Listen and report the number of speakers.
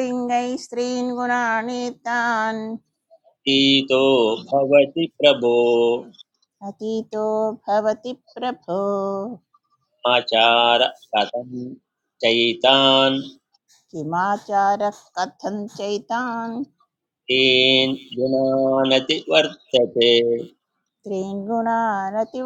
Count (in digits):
2